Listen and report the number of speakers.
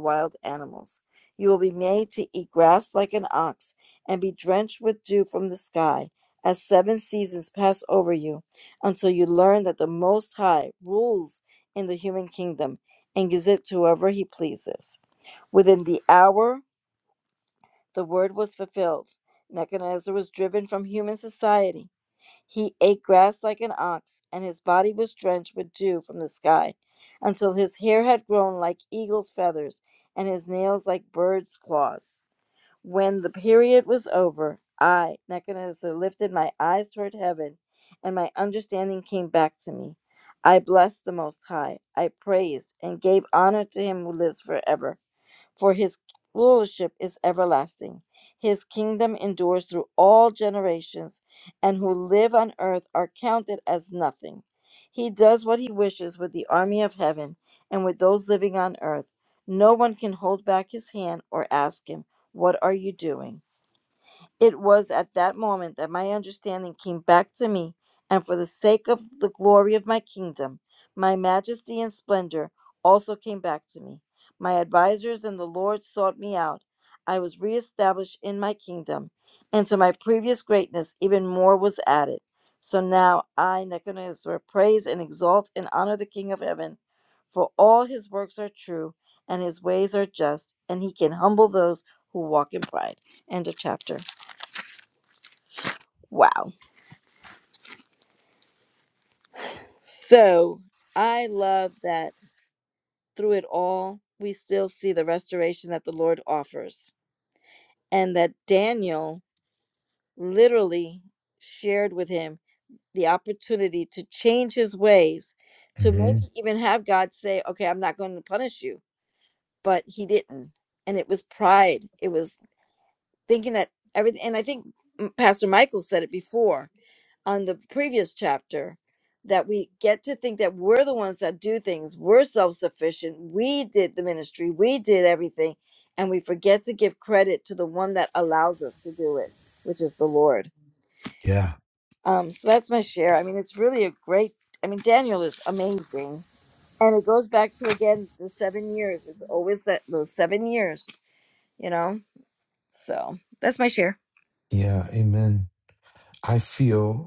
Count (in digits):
2